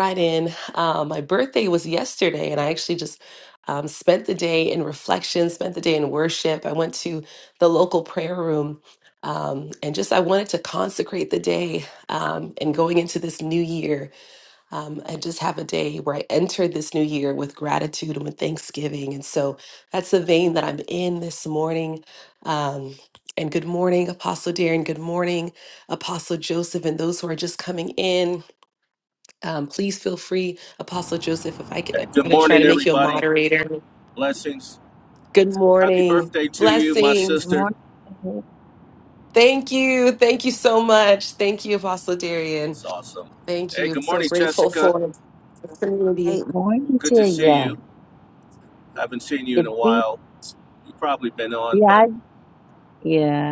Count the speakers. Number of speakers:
3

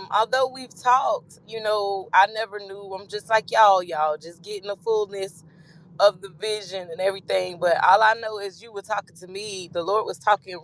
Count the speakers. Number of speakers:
1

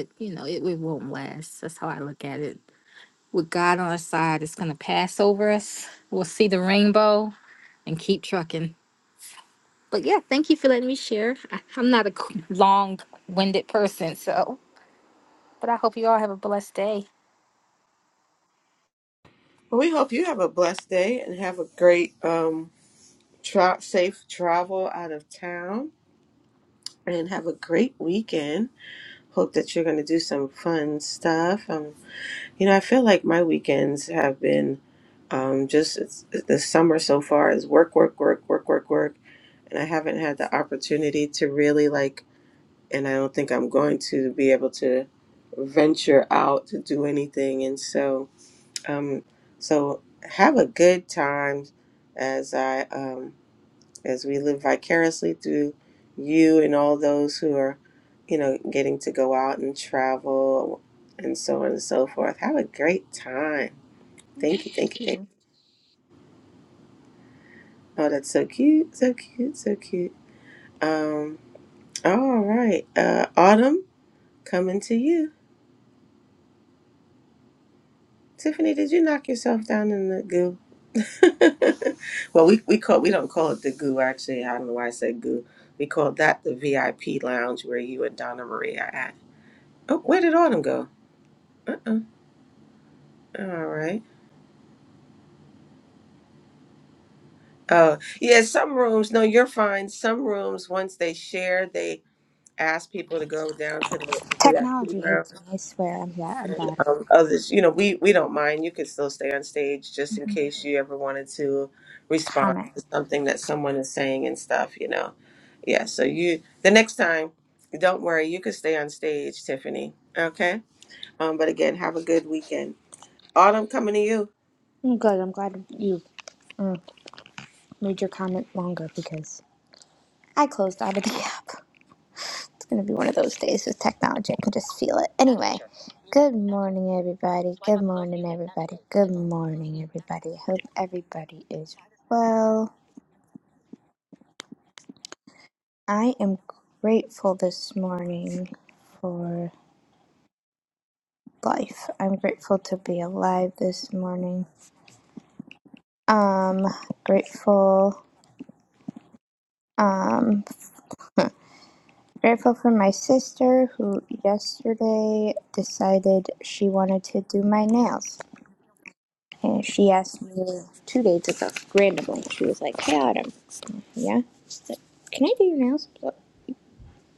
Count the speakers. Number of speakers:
3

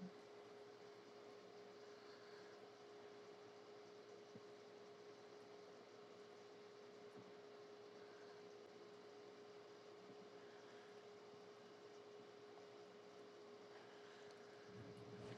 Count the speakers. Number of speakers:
0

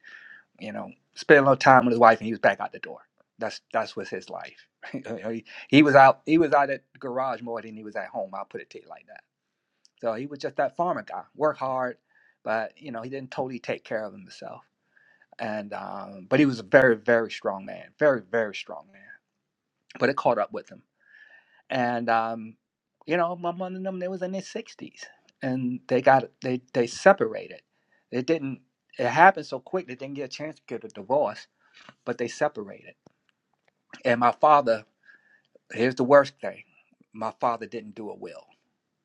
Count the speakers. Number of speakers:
1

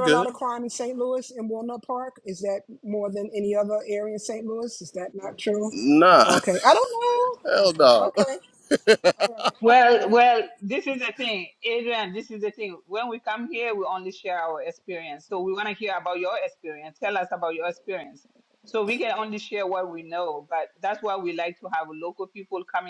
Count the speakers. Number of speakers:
3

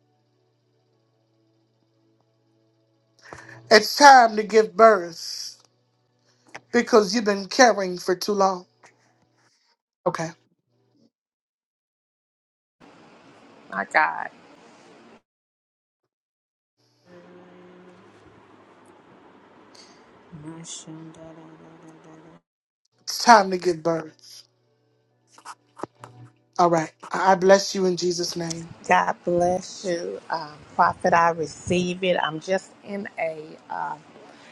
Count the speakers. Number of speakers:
3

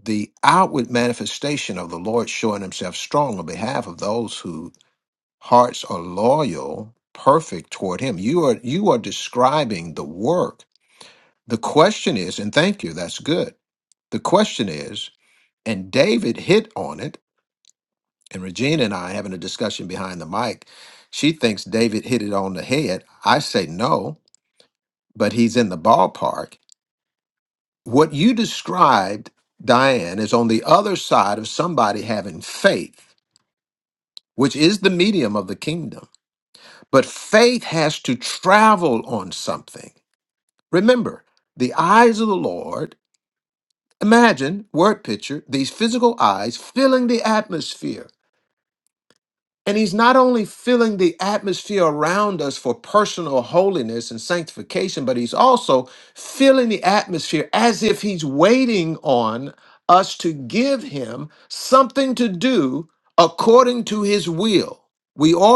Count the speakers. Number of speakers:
1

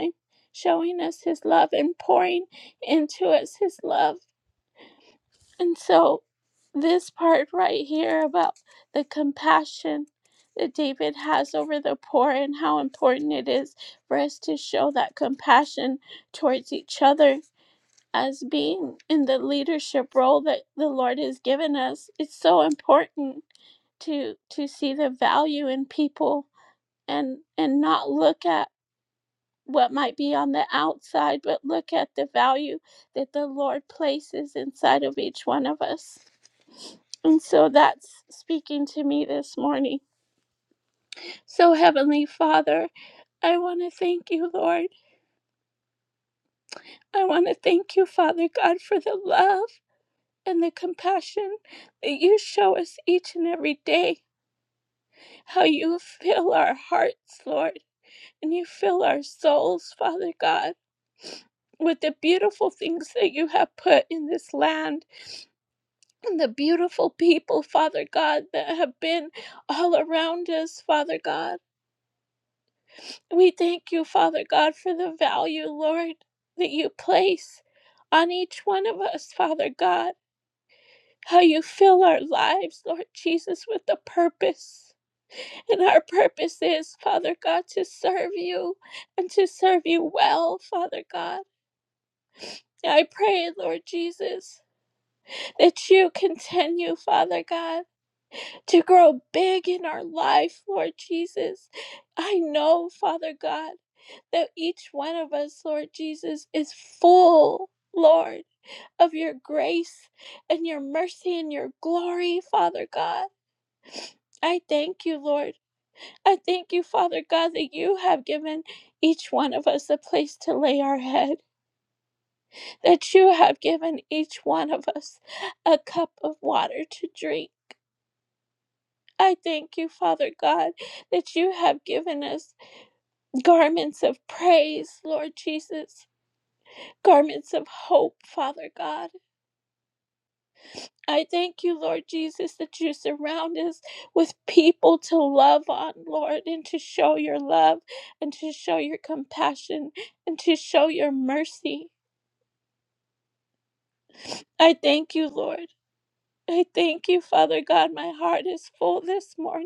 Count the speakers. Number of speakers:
1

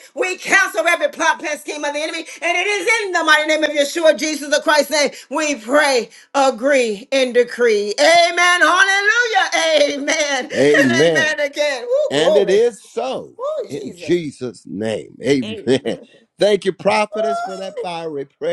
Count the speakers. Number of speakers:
2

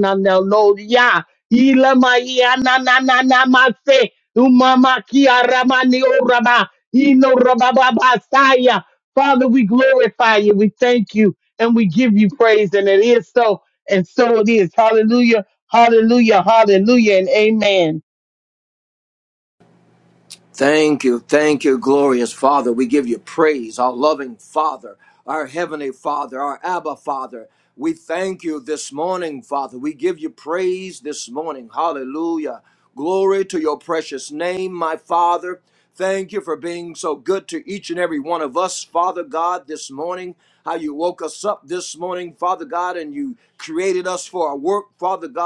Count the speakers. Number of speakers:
2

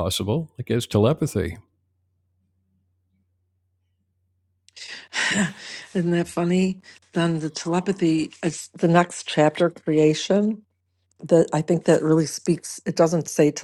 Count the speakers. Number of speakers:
2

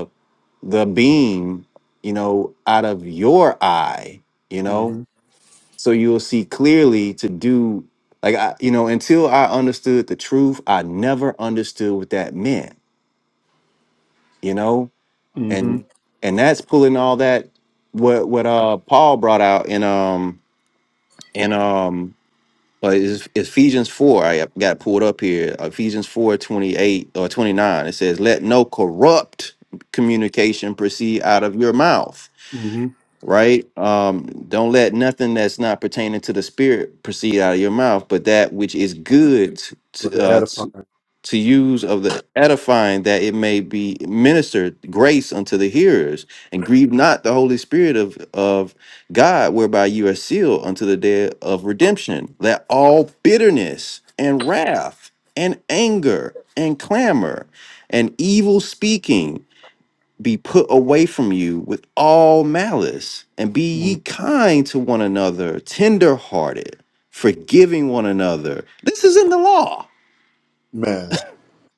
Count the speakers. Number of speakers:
2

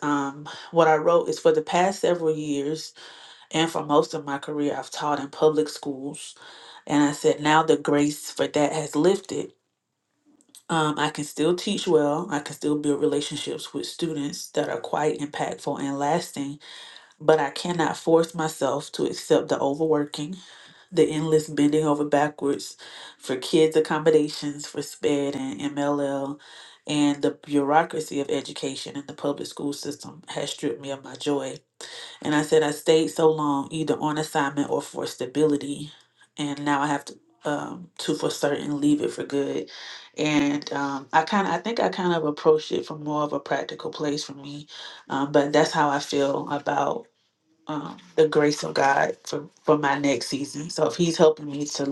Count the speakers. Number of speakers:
1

